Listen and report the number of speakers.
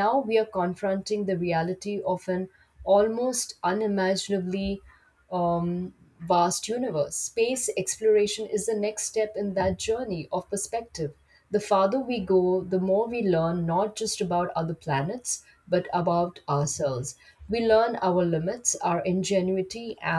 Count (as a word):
one